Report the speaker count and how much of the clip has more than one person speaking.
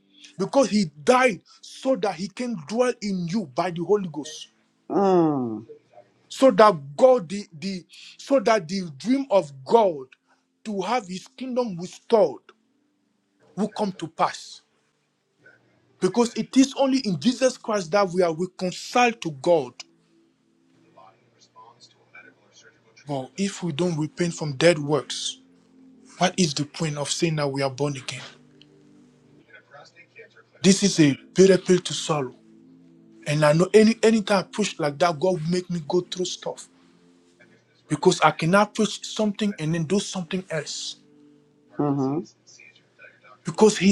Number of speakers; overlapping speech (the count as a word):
two, no overlap